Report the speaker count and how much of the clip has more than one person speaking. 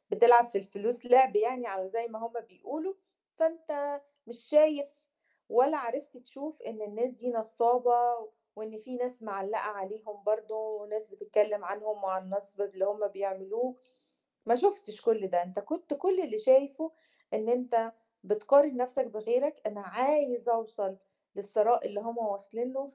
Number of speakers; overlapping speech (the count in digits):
1, no overlap